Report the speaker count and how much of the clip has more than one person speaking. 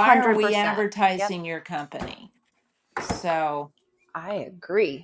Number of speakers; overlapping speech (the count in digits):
2, about 19%